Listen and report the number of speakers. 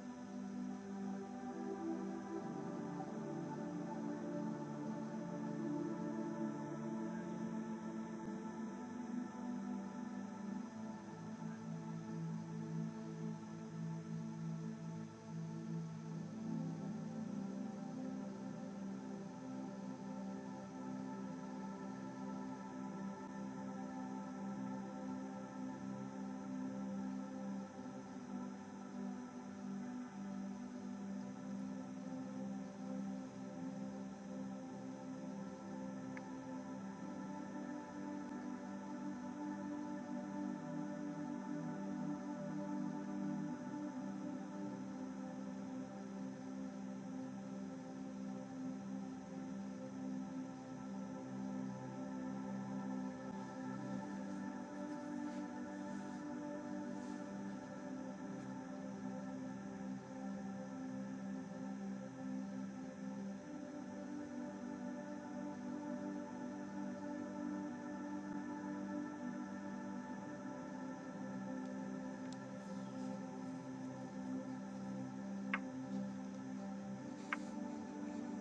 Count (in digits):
0